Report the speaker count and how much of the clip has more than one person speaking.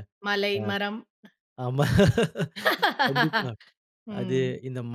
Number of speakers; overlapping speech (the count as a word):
two, about 7%